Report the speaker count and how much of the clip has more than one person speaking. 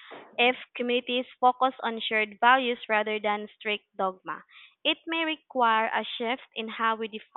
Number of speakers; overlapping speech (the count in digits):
1, no overlap